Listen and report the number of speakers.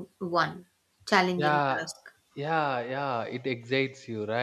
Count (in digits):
2